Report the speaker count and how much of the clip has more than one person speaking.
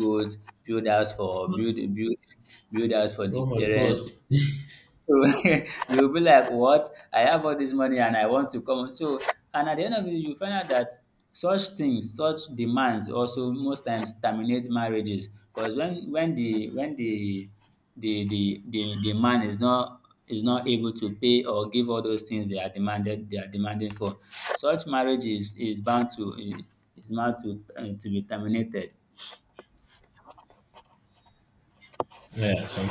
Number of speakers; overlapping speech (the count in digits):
2, about 3%